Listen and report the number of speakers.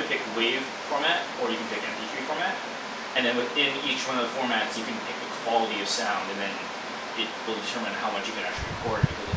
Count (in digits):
1